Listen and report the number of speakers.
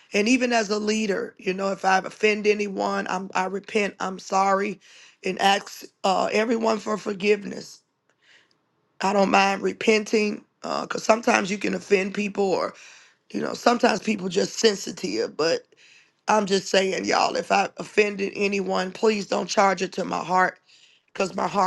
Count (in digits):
1